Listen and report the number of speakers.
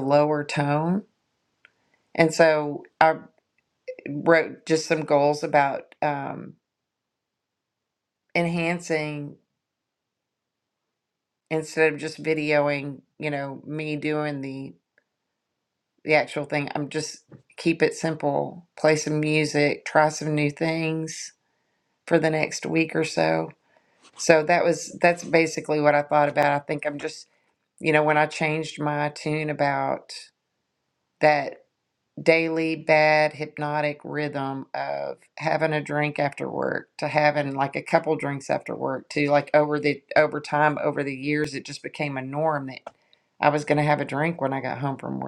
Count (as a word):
one